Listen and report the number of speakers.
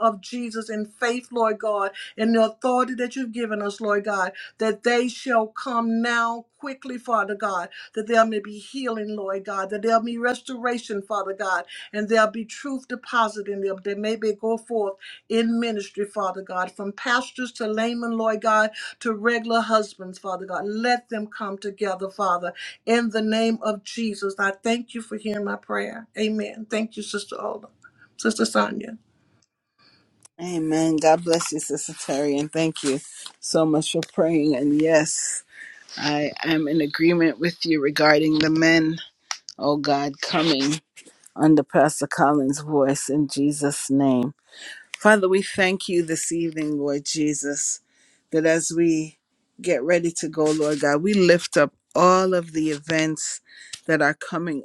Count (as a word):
two